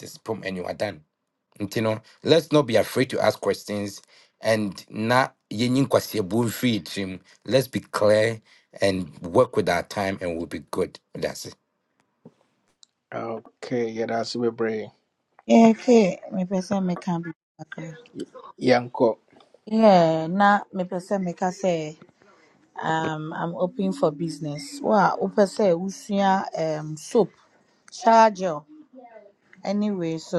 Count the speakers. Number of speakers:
3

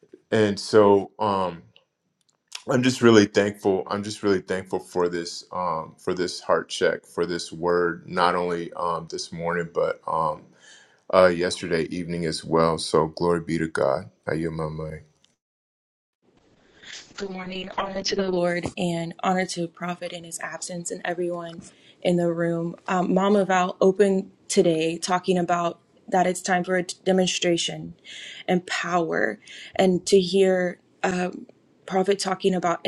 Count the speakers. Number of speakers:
2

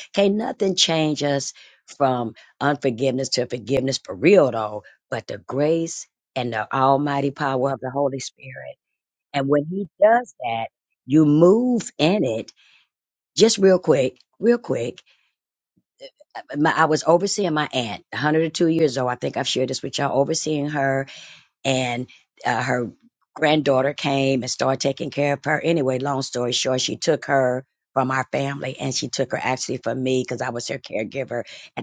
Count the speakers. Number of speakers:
1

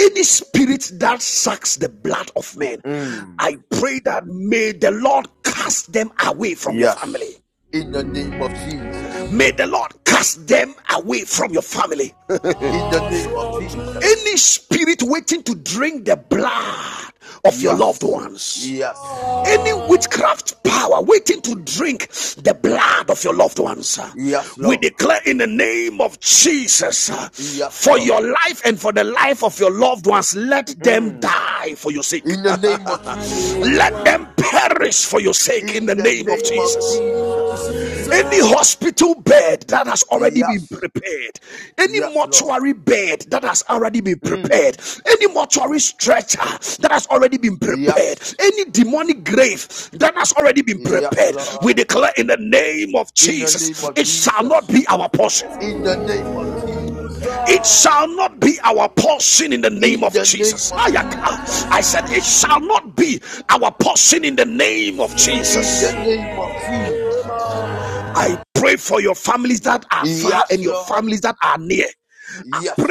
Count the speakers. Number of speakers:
2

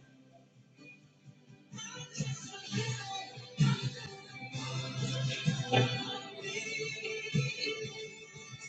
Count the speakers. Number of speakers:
0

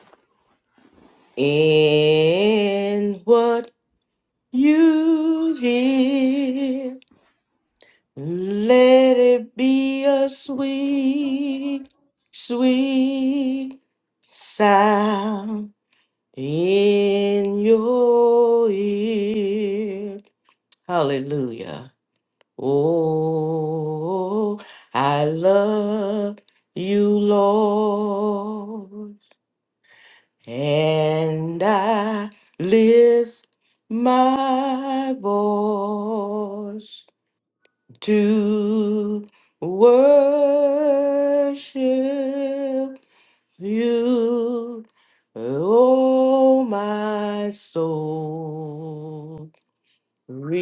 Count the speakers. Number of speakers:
1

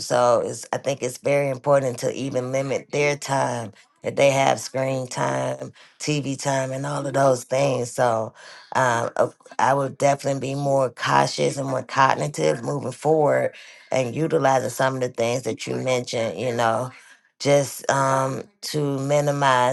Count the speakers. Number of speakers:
1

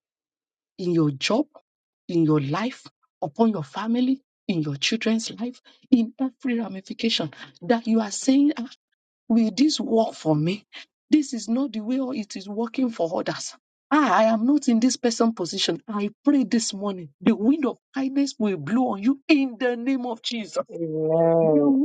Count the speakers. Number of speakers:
2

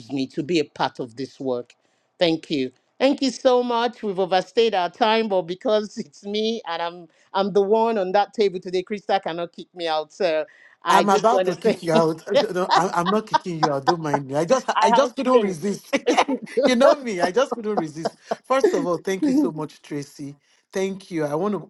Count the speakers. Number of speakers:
2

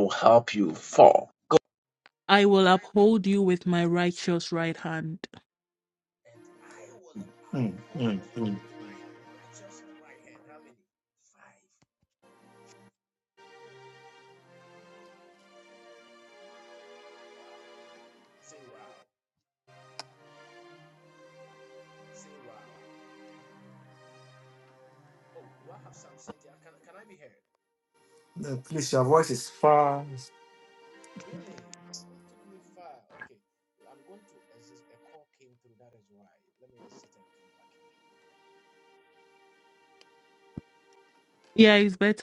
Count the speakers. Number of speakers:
3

